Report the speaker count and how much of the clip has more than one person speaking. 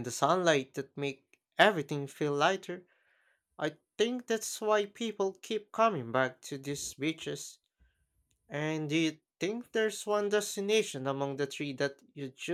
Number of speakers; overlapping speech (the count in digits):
1, no overlap